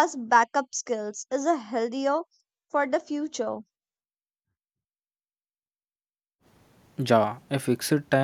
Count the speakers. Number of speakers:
two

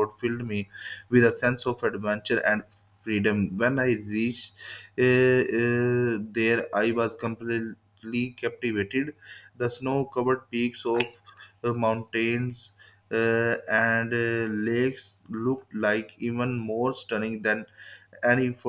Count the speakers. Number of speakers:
one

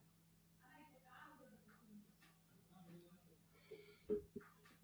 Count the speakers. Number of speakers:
zero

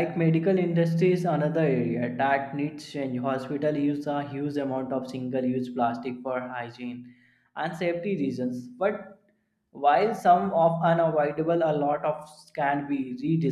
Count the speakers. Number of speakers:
one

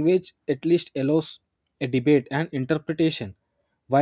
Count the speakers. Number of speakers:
one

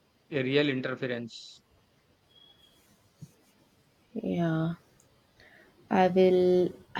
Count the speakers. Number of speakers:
two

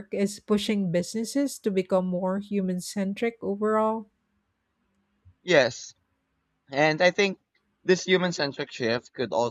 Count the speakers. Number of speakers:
two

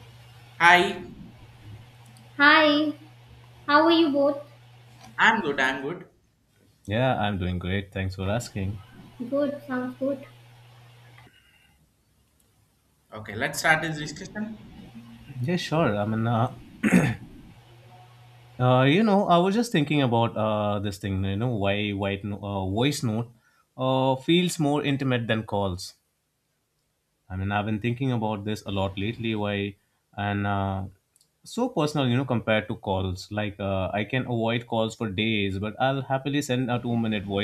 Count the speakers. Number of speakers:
three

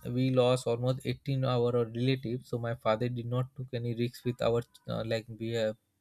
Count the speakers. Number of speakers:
one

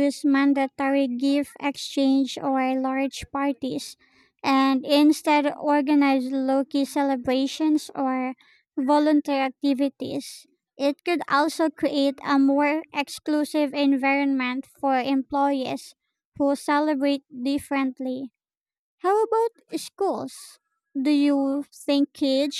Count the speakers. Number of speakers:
one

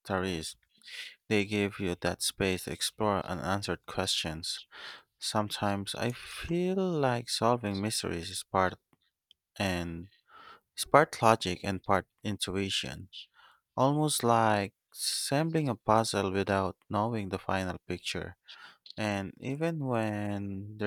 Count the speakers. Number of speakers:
one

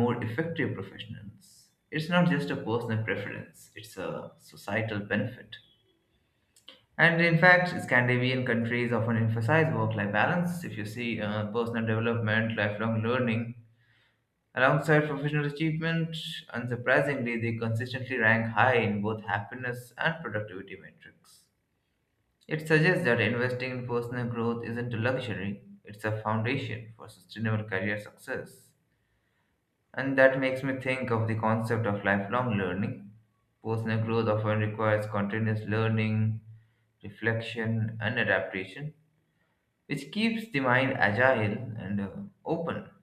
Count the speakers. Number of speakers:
one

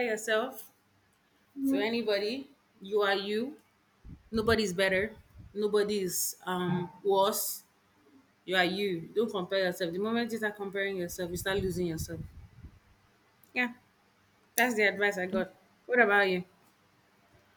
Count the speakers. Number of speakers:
one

